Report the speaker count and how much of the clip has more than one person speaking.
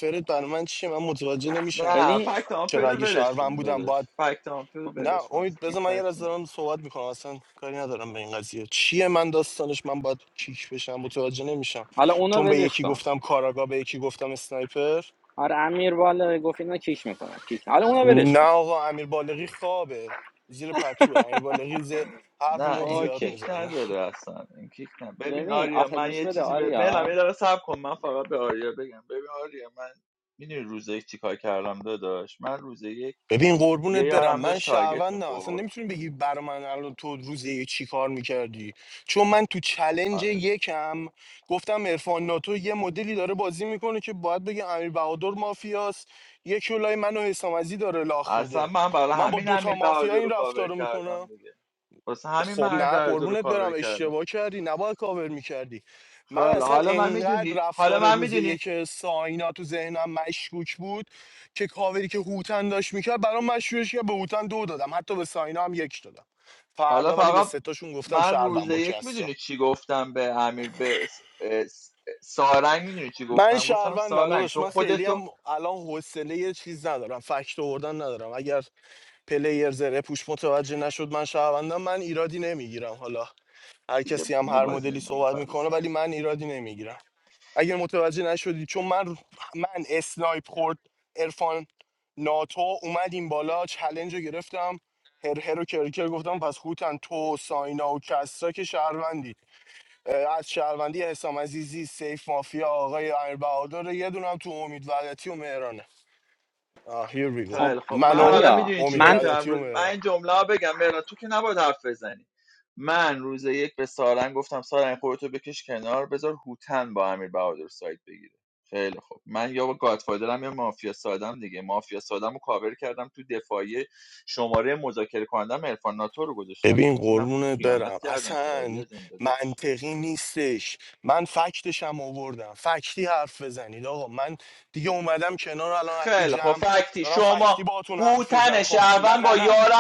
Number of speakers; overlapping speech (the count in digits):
3, about 20%